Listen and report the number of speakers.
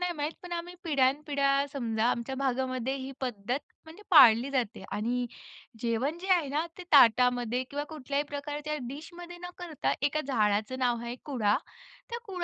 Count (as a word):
one